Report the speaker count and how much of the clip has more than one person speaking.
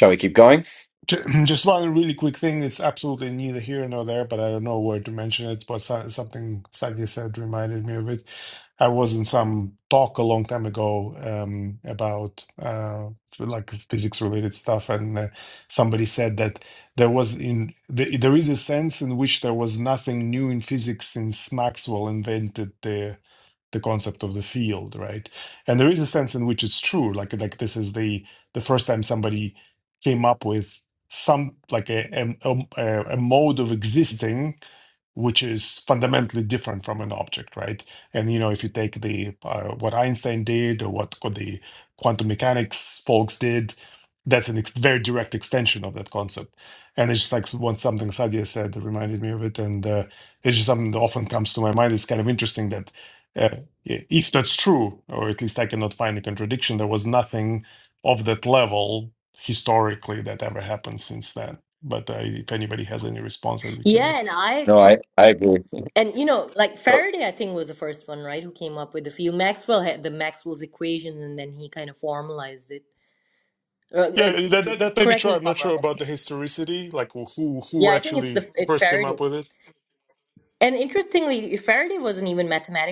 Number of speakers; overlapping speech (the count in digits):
3, about 4%